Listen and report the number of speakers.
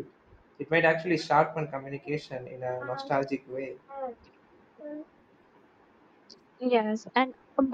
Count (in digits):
2